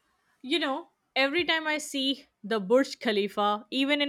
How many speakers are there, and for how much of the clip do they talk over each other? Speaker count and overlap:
one, no overlap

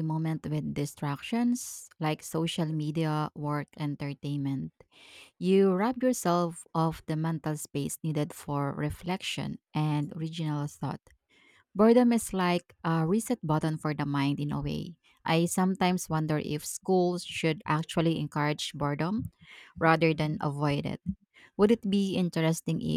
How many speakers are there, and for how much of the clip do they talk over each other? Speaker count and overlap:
one, no overlap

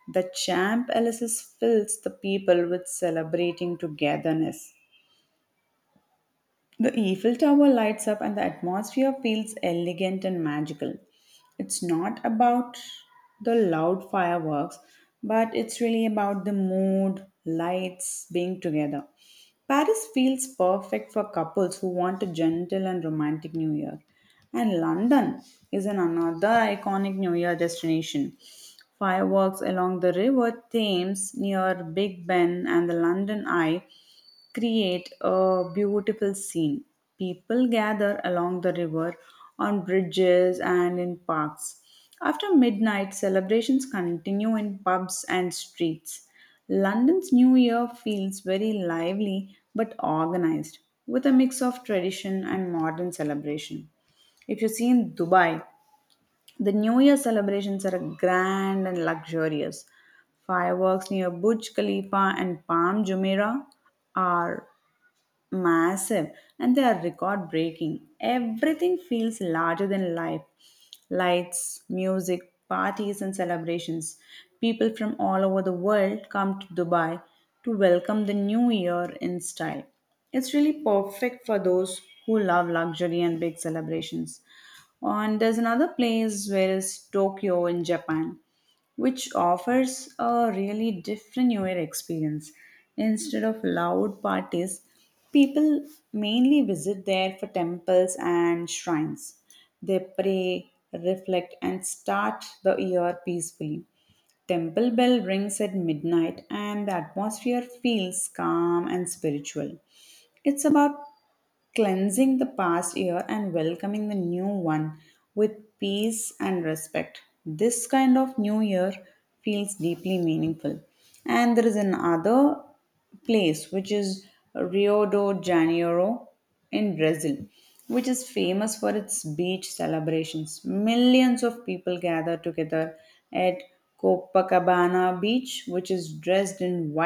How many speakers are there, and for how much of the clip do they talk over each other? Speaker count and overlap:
one, no overlap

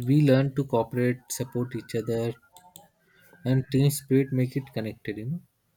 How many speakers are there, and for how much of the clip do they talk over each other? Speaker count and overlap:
one, no overlap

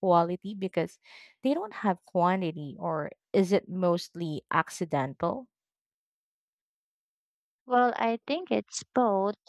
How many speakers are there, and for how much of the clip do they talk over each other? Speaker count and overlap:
two, no overlap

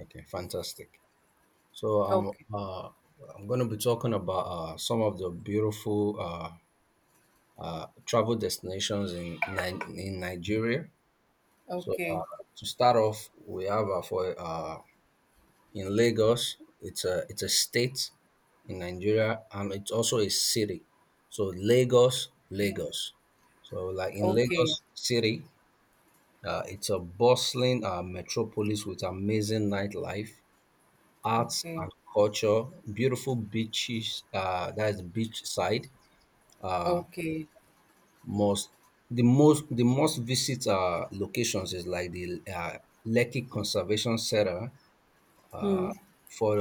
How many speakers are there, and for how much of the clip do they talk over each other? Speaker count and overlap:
two, about 5%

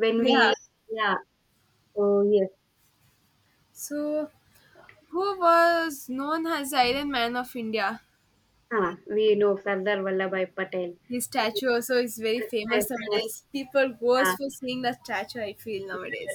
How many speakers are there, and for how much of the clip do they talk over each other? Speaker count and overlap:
two, about 11%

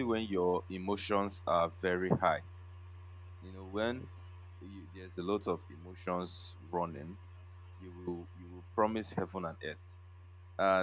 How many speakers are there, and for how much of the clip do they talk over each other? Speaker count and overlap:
one, no overlap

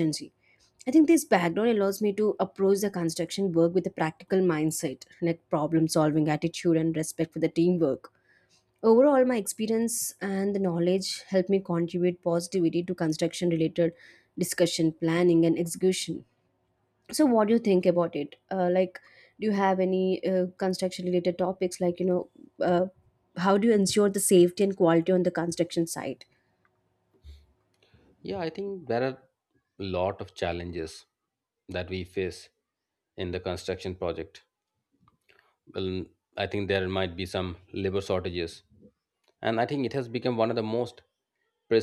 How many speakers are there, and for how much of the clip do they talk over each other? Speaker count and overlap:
two, no overlap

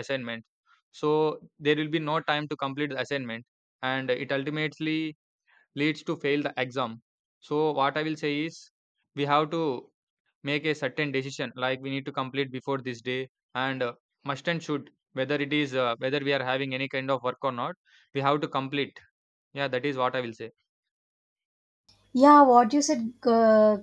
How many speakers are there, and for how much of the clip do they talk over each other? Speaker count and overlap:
two, no overlap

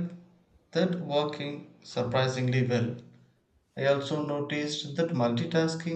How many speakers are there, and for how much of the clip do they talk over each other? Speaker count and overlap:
one, no overlap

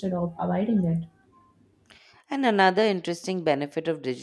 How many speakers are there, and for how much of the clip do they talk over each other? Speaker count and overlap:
two, no overlap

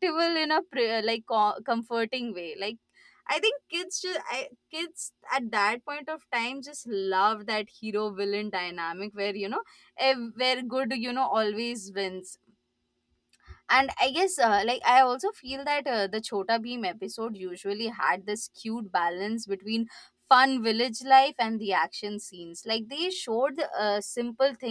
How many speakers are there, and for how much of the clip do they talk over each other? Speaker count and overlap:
one, no overlap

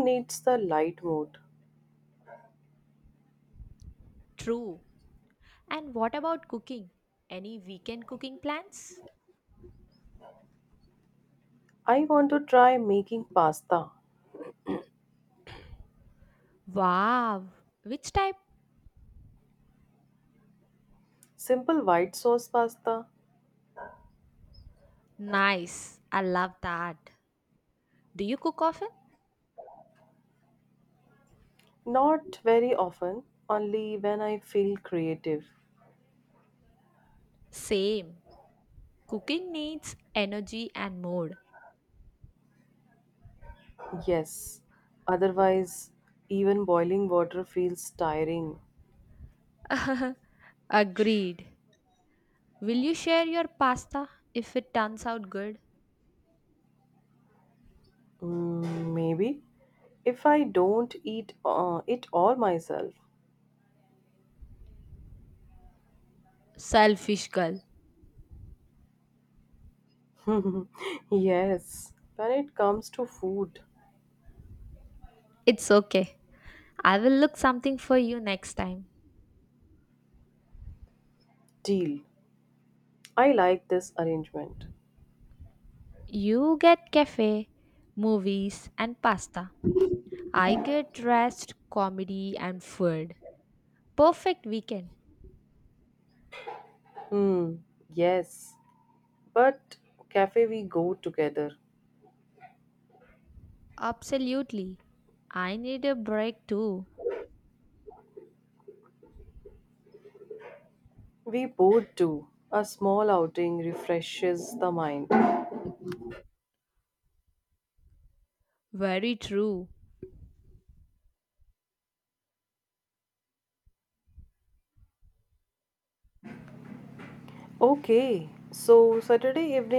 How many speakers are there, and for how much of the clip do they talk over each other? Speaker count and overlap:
two, no overlap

